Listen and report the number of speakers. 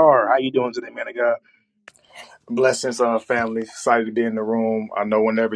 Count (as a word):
two